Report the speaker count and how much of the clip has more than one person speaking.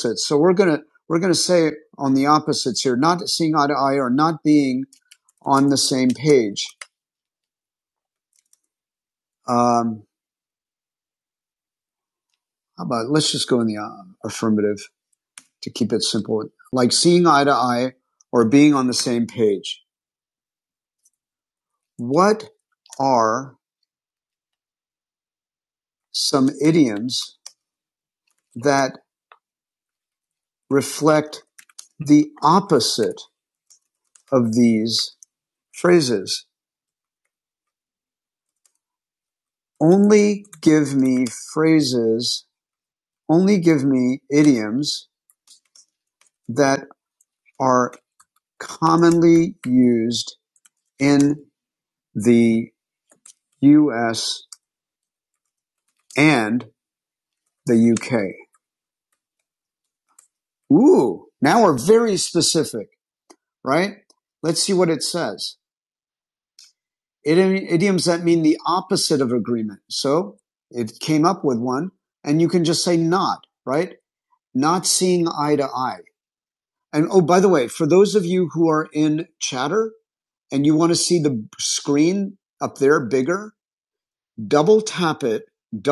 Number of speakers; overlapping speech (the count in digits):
1, no overlap